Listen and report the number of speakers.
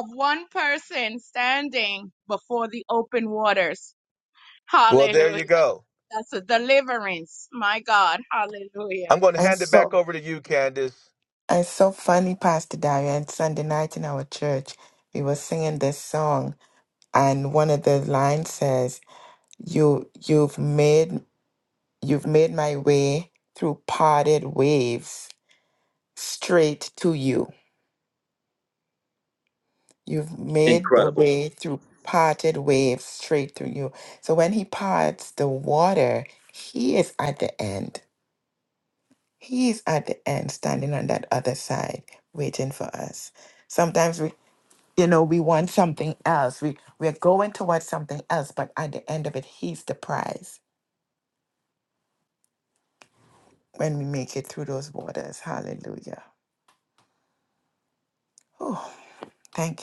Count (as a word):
three